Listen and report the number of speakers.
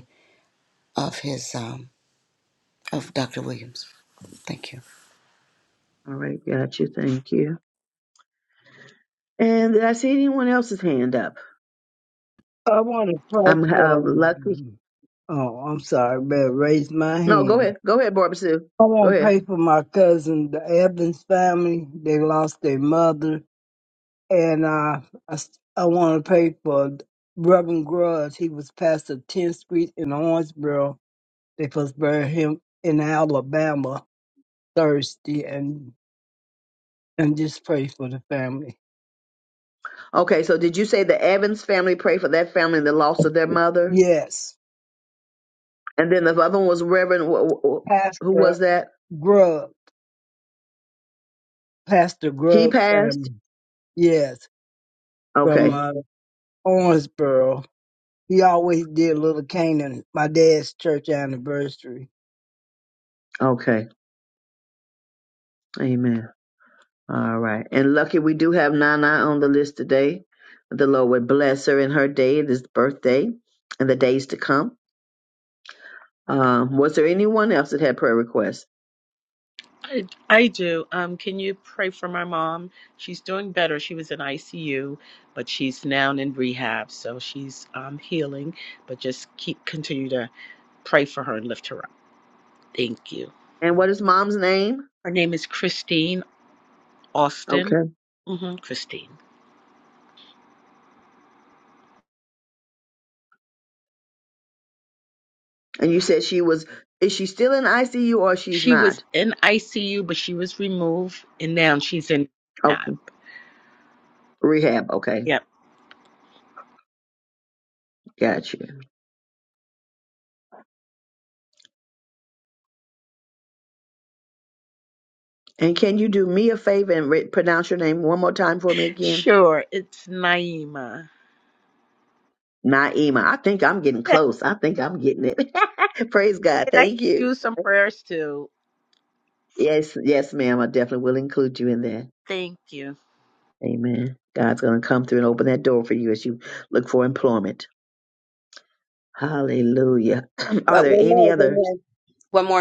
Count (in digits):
5